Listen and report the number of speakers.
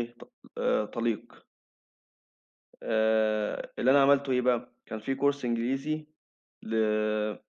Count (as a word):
one